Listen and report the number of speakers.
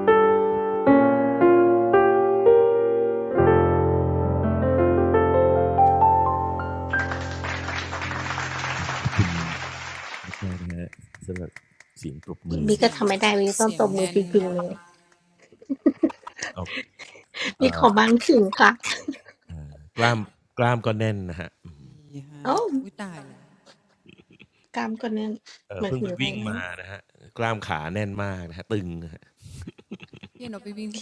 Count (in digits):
3